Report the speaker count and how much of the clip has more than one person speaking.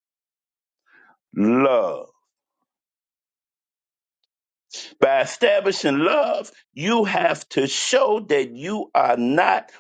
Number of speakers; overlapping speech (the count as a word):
one, no overlap